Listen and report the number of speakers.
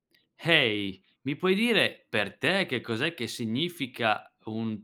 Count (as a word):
one